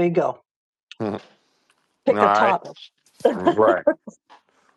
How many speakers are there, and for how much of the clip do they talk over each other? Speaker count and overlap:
2, about 10%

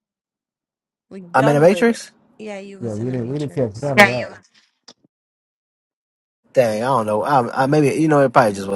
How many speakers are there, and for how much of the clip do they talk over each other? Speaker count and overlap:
3, about 17%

